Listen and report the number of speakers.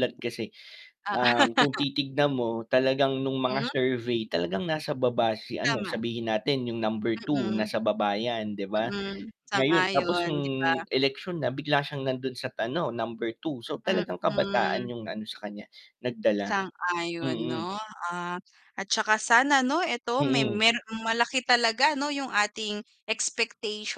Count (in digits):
2